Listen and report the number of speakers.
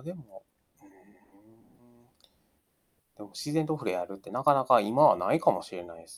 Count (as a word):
one